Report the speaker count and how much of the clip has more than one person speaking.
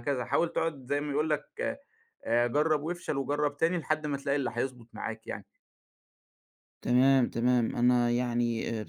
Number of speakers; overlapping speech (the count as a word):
two, no overlap